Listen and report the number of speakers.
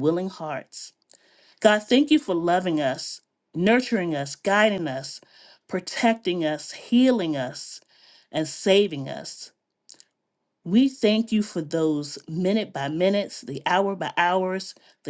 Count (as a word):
one